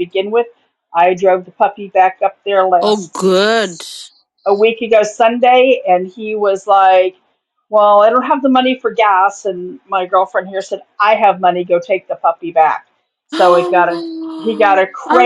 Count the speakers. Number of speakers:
two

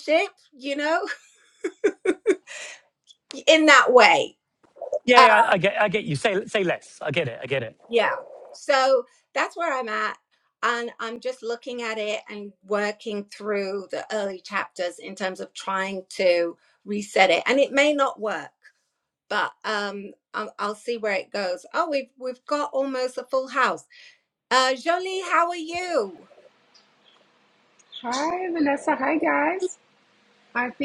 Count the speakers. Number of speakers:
three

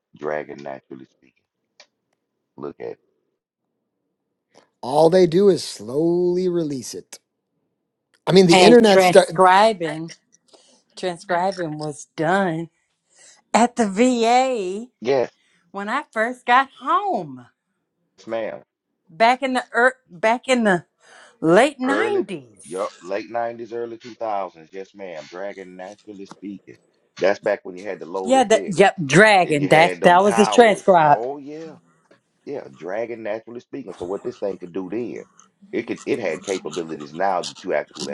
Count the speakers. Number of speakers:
three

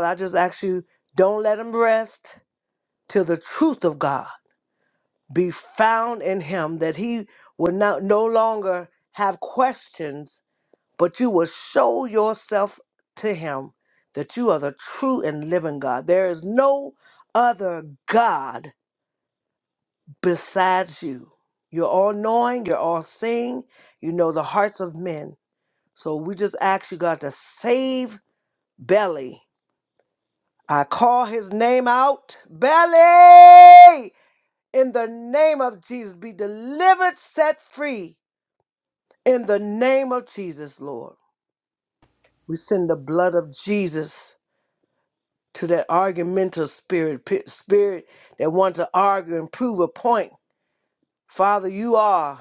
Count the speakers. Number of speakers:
one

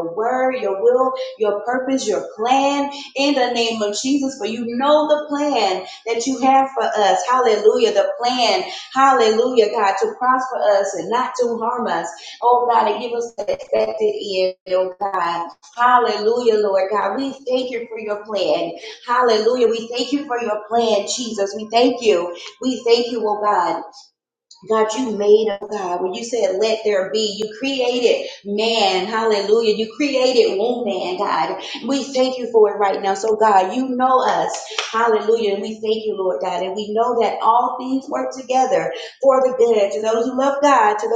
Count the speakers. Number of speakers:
one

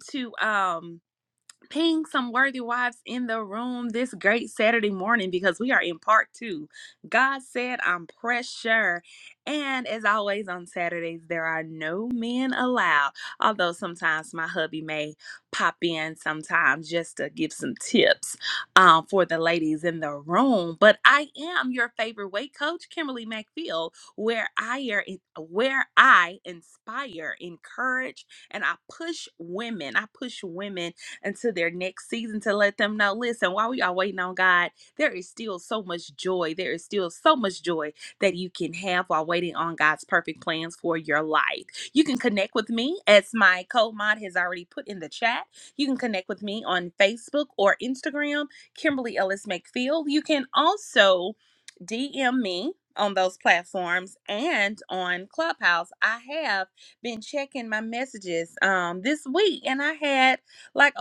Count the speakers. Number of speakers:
one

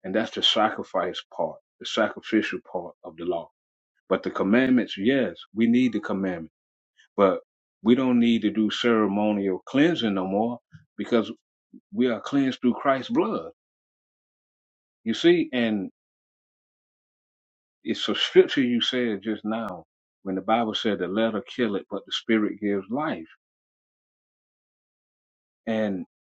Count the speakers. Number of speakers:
one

